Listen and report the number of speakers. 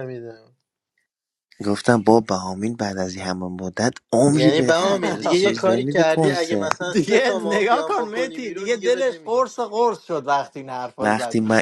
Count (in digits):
3